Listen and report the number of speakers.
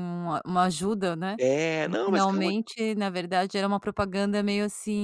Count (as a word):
two